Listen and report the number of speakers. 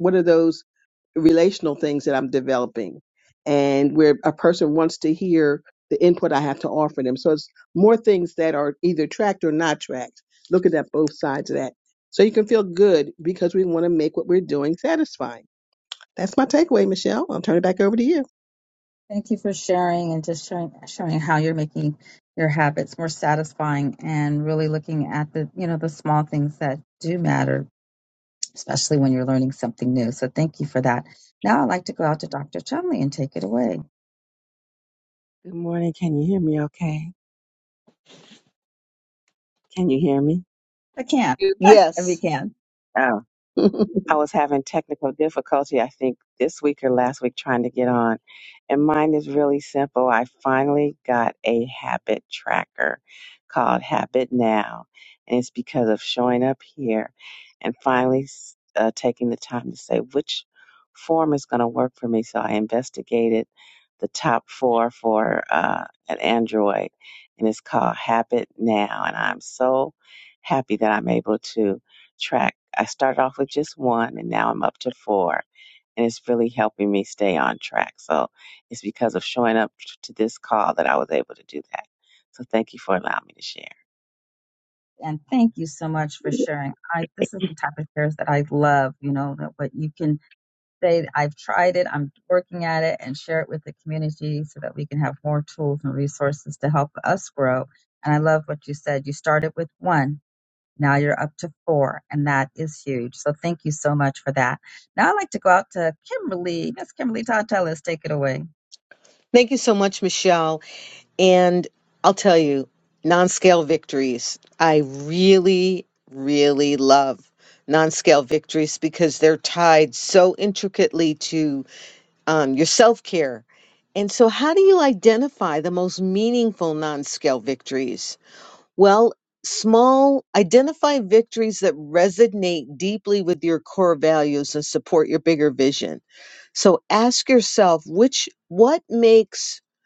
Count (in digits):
4